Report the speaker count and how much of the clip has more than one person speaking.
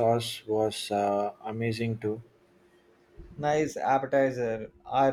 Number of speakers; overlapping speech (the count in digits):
2, no overlap